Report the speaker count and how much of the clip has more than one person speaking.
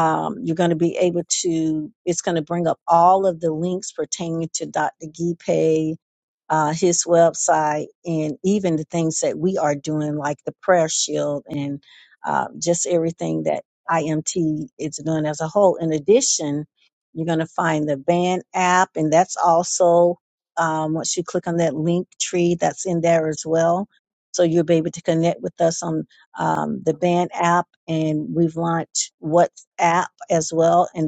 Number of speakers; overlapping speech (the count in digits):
1, no overlap